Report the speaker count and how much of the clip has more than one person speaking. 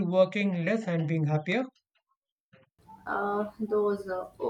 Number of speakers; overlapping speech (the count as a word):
two, no overlap